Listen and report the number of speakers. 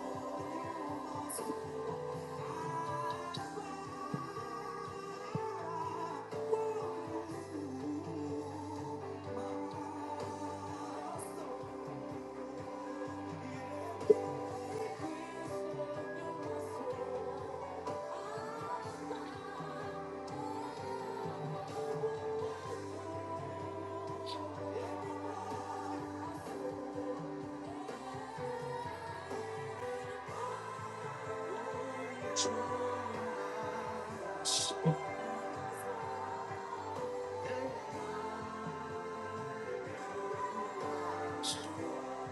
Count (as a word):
zero